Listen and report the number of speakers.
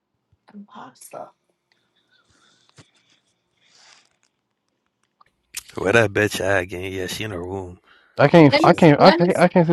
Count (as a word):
three